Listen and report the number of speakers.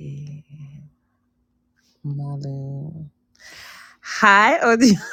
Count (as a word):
one